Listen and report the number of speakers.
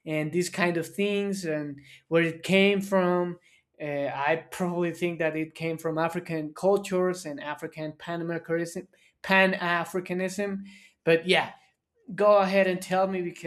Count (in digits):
1